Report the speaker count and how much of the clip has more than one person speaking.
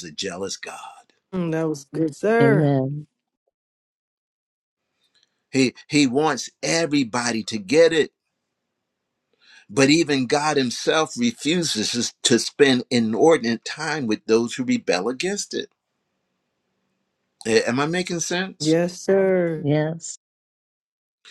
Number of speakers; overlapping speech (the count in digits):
3, about 2%